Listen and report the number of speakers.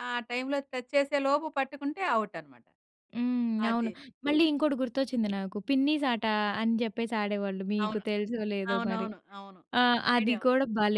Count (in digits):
2